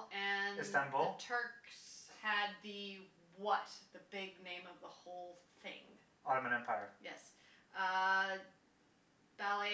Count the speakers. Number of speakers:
2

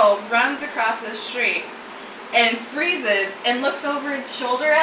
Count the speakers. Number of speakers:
1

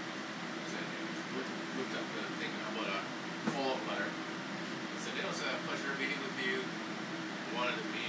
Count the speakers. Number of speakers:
1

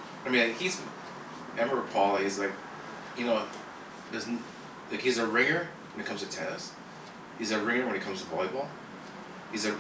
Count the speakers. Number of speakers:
1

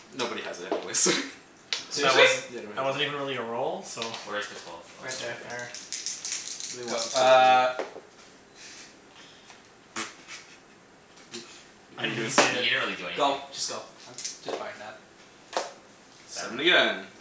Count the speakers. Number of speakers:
4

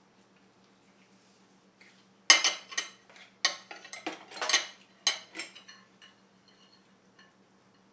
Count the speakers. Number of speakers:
0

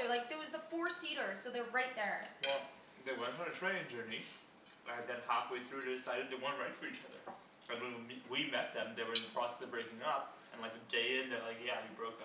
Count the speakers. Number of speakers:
2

